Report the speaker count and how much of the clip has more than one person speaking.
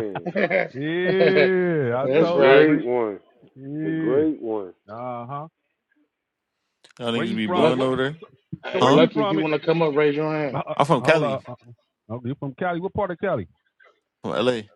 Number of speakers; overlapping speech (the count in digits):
4, about 23%